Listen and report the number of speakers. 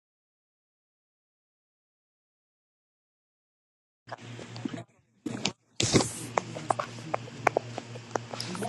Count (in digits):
0